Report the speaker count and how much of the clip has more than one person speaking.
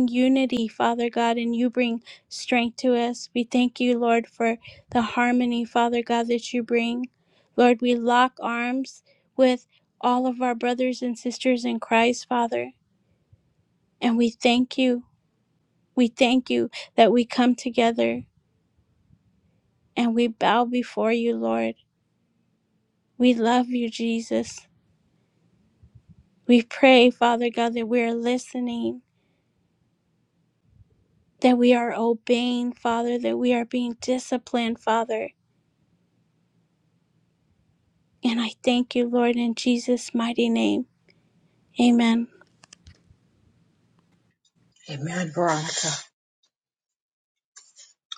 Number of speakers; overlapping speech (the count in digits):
2, no overlap